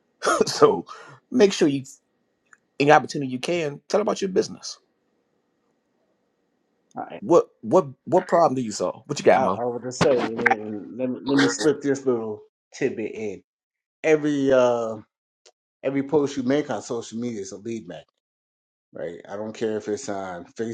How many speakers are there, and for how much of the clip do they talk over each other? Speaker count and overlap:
2, about 1%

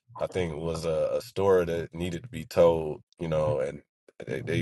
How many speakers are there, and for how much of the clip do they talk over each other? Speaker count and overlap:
1, no overlap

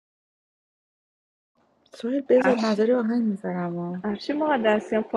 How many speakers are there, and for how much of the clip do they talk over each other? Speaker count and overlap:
2, about 11%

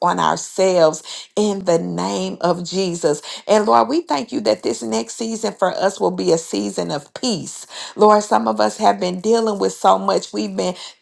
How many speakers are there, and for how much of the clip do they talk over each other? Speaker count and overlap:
1, no overlap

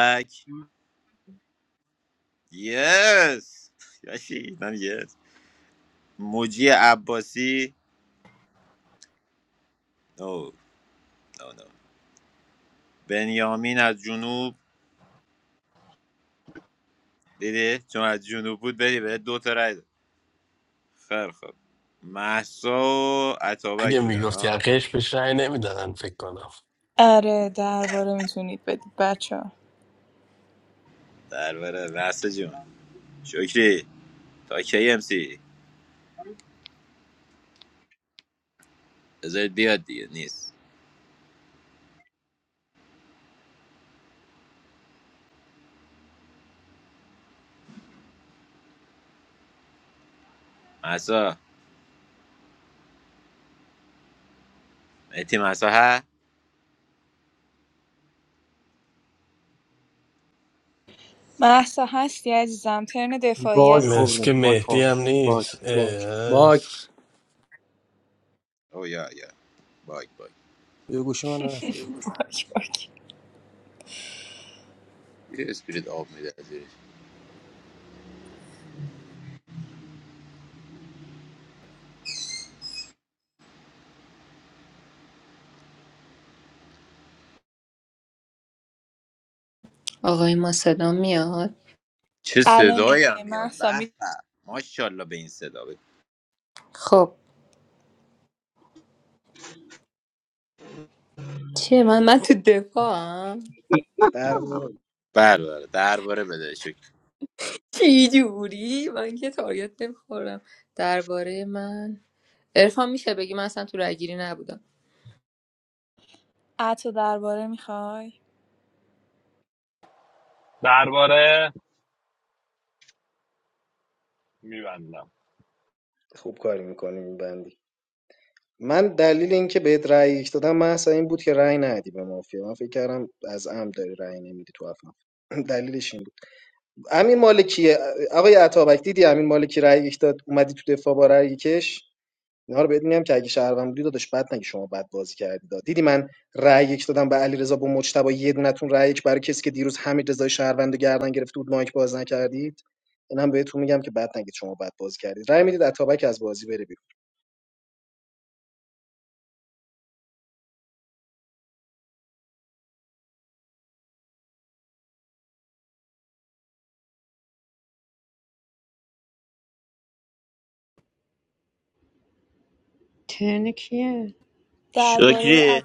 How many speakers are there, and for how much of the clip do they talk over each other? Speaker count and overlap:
8, about 3%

